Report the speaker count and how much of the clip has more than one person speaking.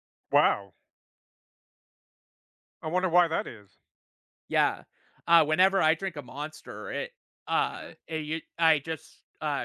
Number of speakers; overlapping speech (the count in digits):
2, about 2%